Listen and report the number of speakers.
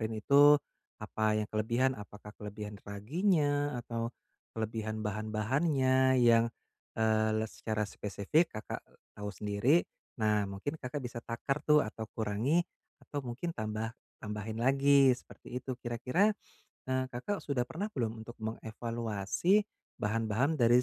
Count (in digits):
1